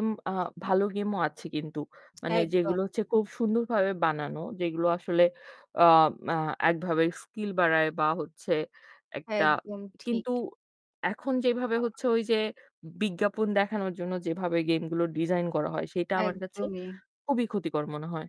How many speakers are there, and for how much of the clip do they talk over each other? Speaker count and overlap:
2, about 7%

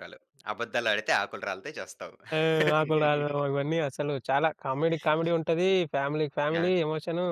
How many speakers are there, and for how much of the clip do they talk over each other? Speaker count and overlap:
2, about 3%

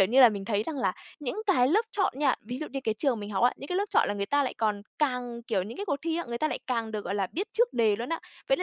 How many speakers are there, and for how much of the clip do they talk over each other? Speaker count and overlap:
1, no overlap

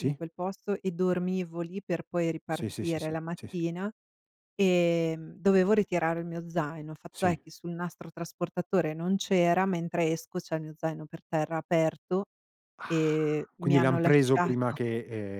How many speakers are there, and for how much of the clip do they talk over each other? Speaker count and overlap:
2, about 15%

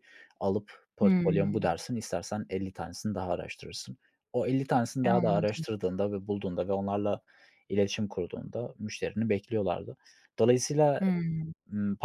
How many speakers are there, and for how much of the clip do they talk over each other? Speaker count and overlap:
2, about 11%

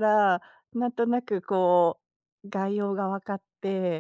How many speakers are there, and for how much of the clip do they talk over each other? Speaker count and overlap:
1, no overlap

